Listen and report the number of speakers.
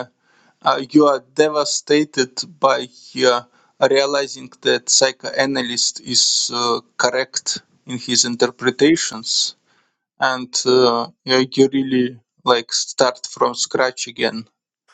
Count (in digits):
1